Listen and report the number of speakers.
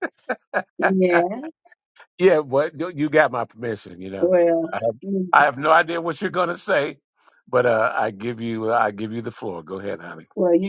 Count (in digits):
2